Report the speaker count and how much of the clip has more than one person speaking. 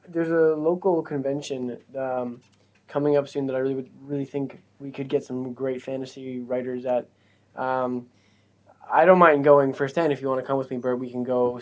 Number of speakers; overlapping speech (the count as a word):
one, no overlap